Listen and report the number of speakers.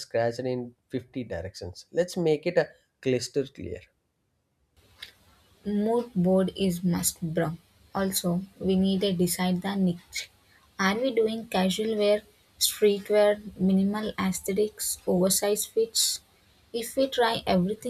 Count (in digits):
2